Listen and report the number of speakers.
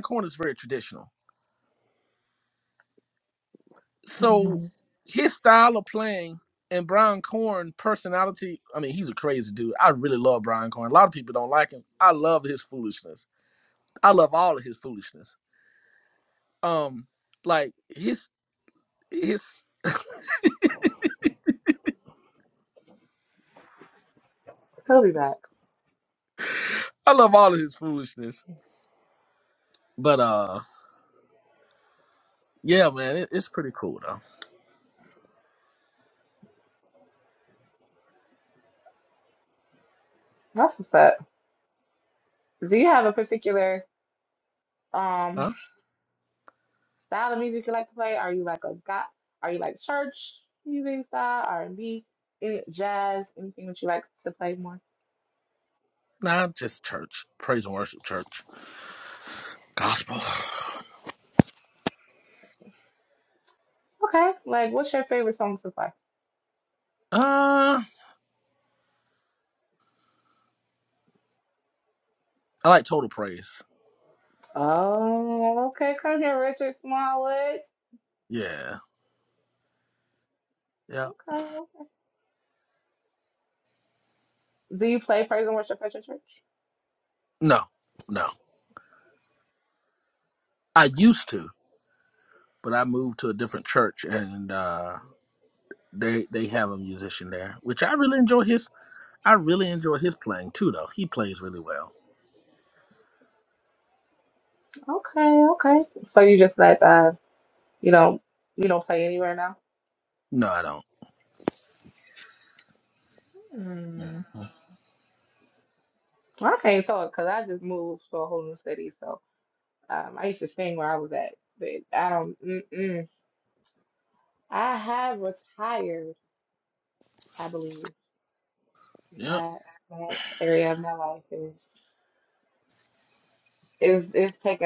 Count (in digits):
2